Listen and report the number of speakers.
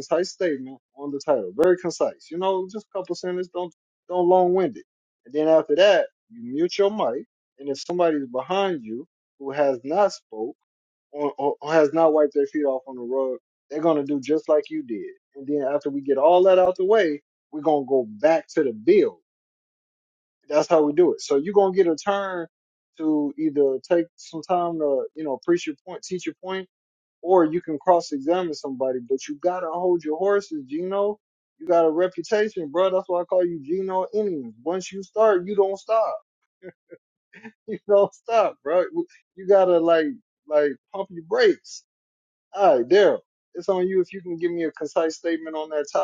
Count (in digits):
1